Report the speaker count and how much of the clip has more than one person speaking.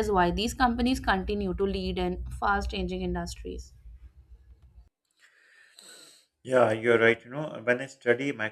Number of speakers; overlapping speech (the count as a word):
two, no overlap